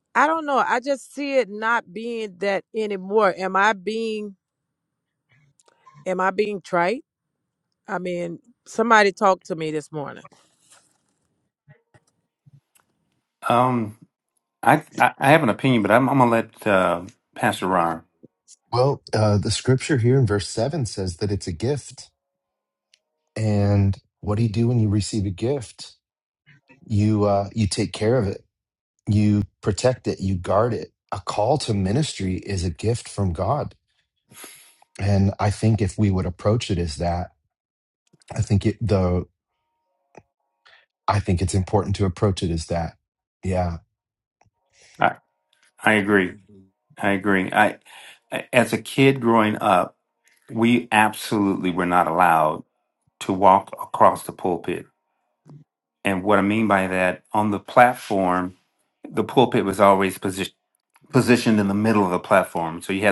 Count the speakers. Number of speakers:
three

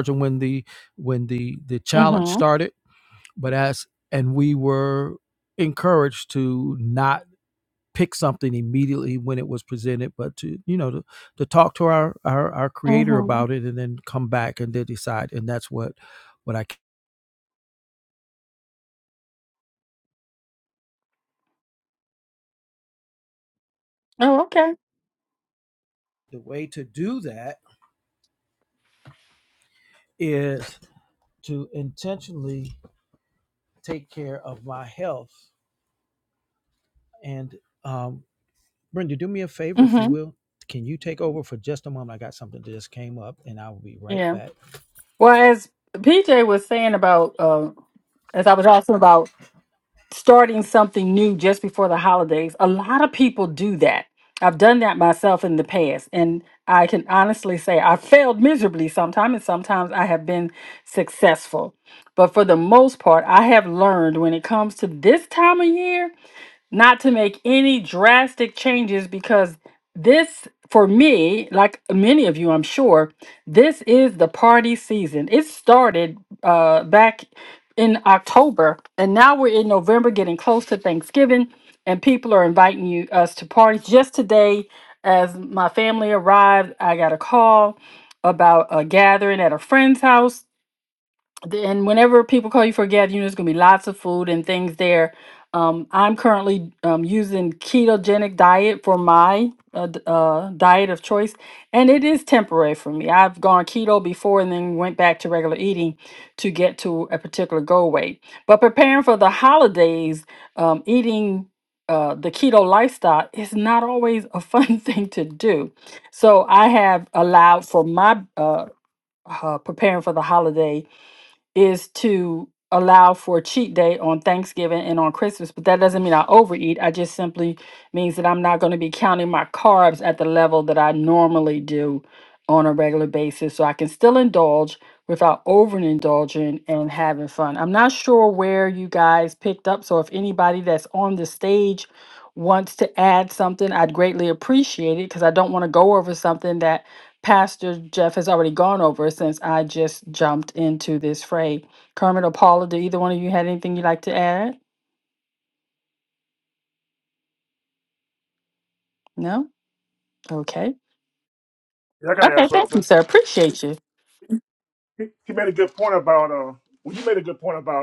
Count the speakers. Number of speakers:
three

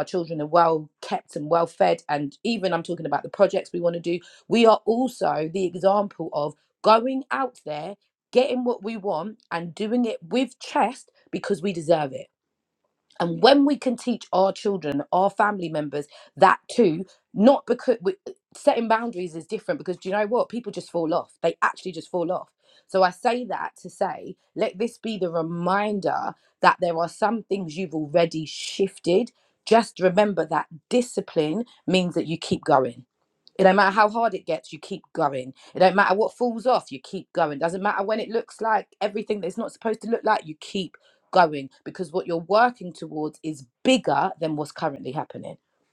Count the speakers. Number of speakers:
one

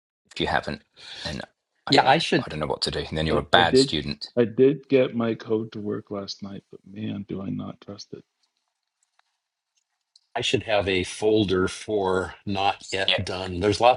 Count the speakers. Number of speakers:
three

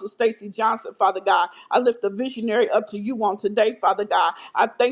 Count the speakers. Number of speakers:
one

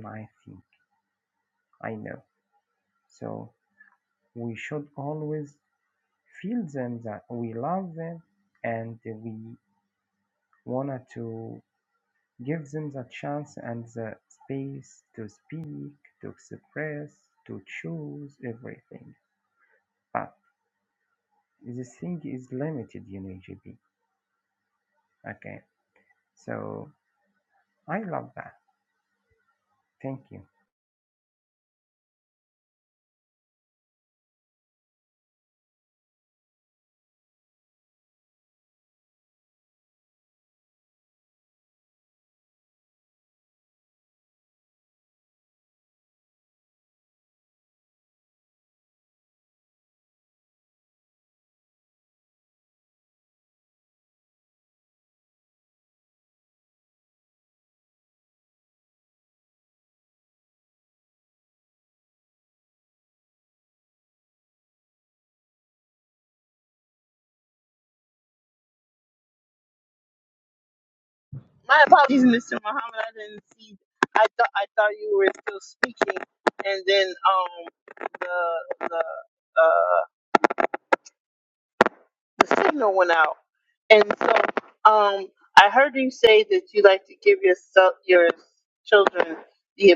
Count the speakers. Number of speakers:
two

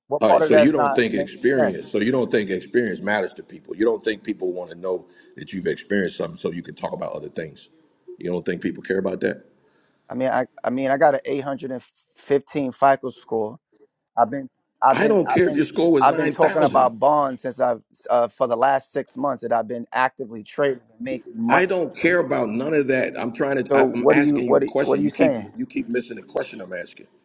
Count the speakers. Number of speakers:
two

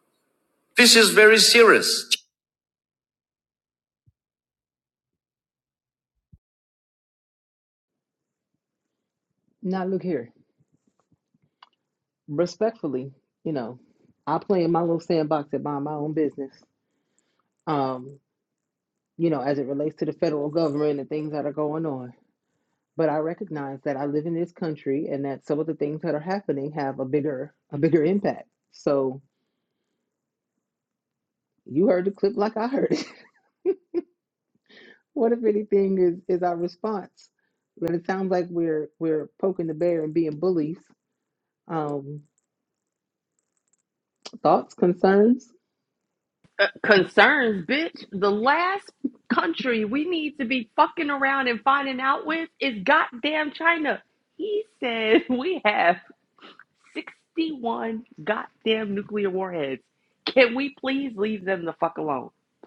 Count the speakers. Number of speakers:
three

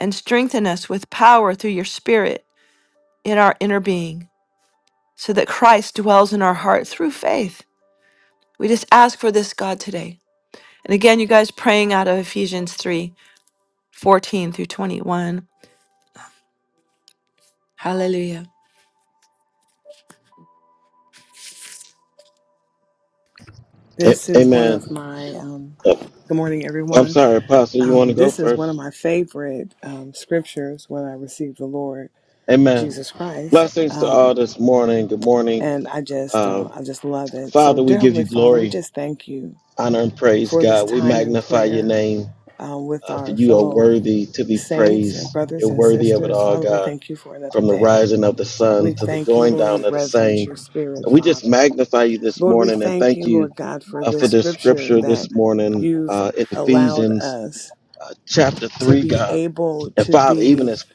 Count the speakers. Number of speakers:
three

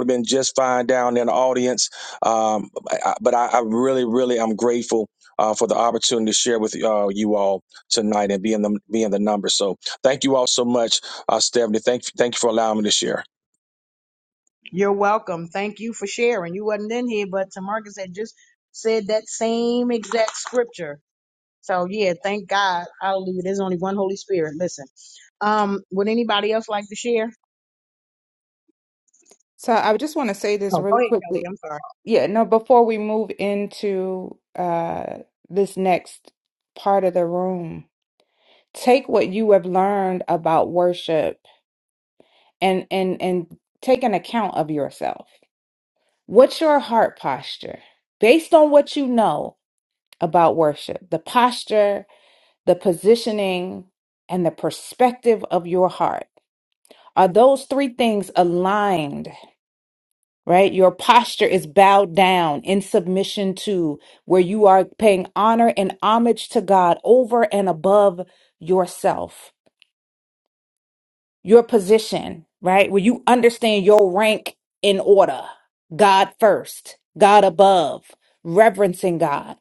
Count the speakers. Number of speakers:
three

